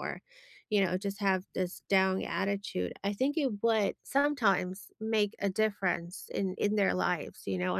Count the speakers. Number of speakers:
1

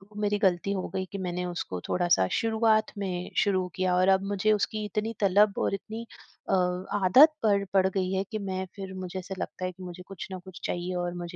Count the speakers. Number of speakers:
1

